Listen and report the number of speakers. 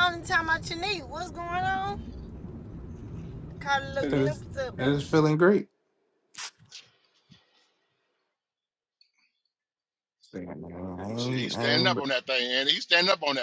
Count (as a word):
three